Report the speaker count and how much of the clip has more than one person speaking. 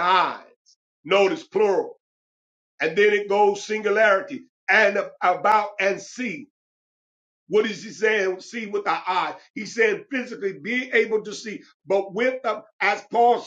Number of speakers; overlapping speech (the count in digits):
1, no overlap